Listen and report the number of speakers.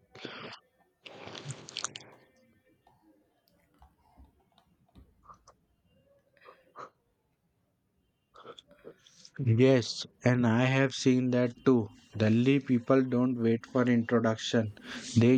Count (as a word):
one